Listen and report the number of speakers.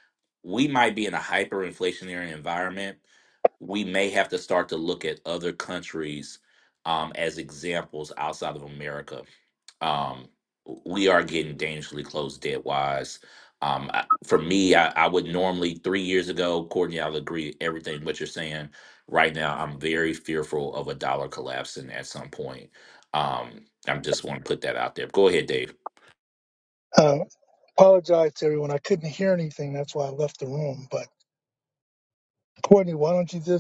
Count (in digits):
2